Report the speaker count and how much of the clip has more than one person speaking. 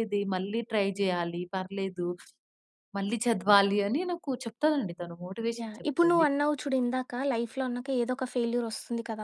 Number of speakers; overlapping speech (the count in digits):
2, about 8%